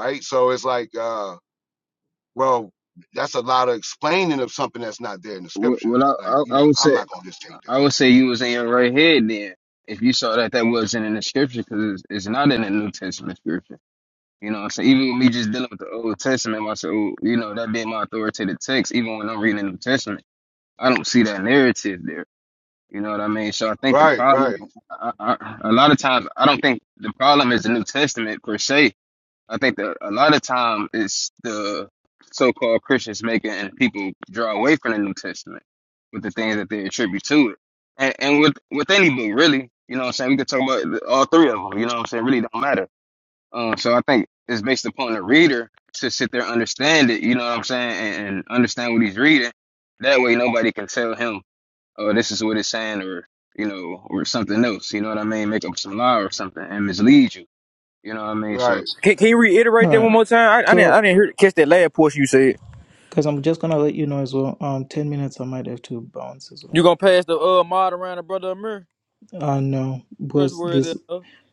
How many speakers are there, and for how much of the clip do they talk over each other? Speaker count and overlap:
4, about 5%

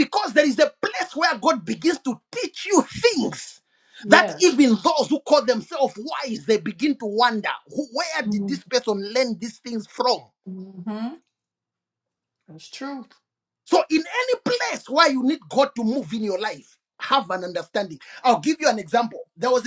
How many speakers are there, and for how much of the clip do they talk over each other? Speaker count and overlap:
2, about 2%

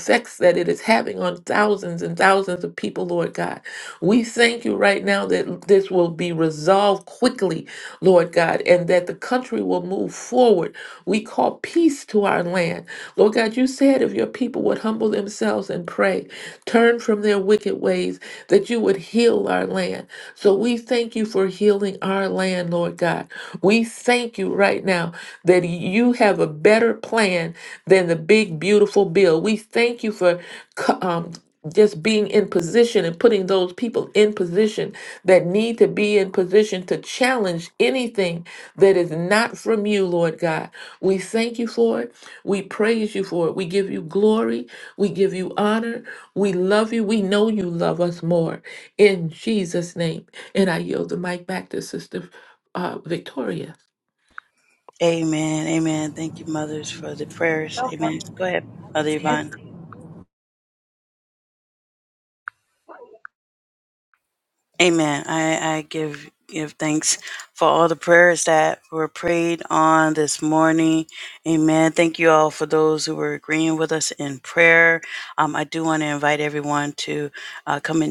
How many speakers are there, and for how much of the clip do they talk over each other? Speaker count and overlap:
2, no overlap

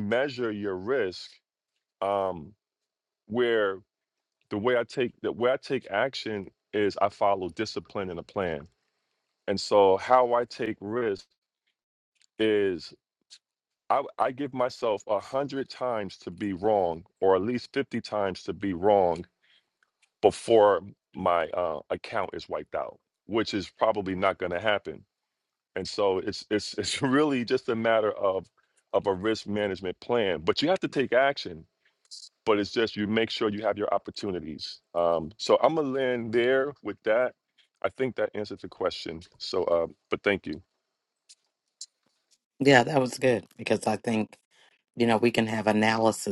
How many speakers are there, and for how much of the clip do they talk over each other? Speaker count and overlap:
2, no overlap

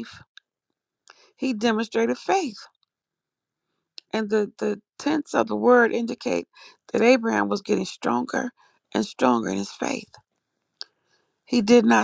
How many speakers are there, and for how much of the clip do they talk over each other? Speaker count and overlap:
1, no overlap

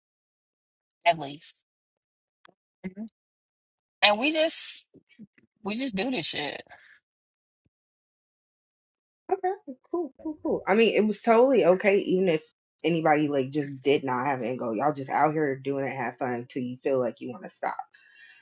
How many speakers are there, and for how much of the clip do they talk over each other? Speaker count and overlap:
2, no overlap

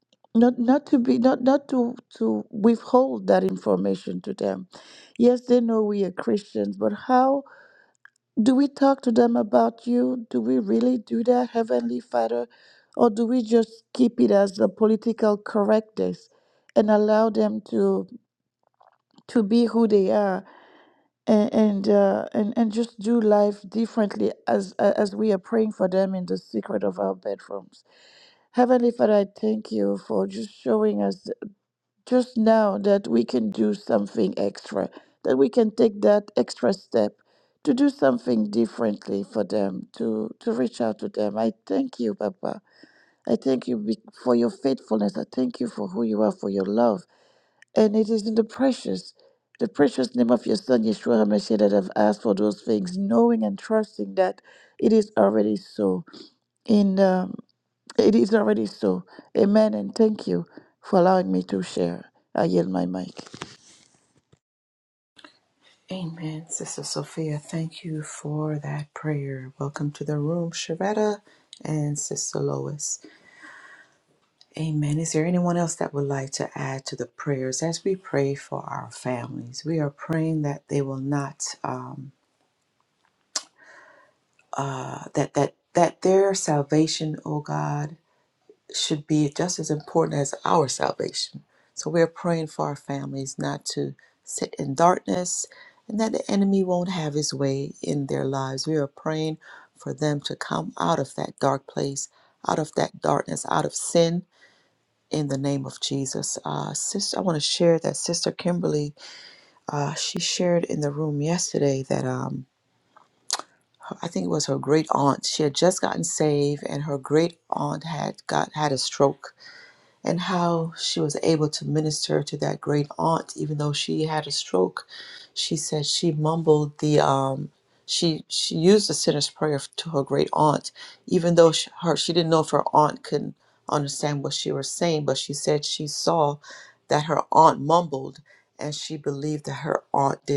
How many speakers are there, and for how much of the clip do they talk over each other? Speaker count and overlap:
2, no overlap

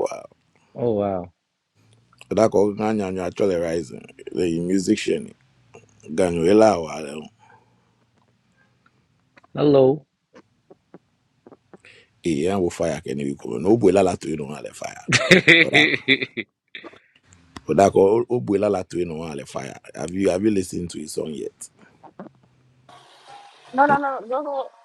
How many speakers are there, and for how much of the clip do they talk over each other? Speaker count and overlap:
3, about 1%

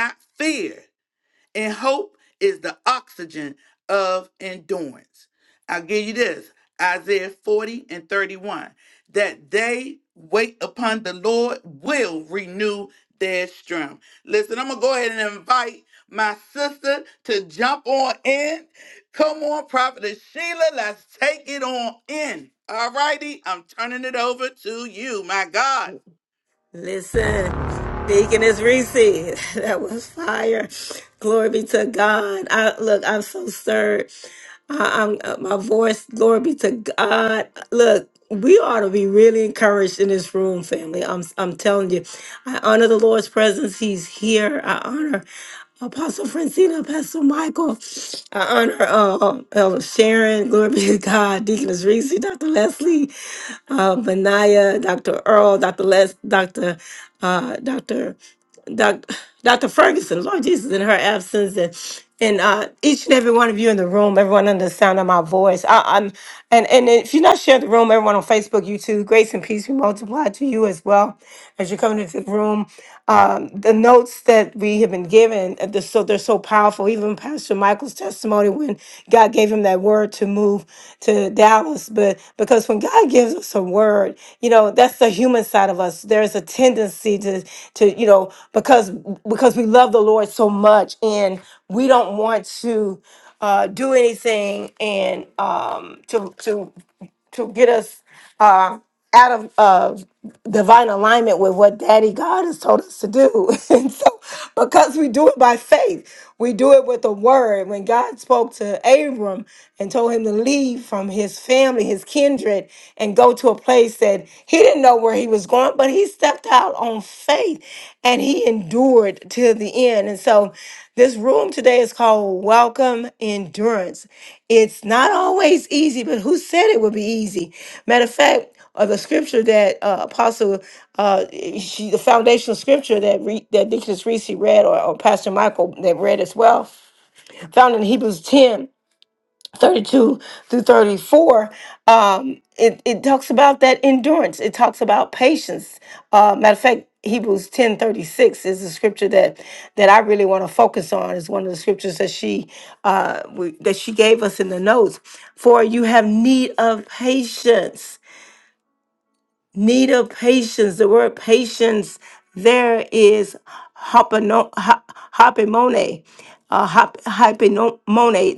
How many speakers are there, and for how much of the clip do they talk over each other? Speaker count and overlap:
2, no overlap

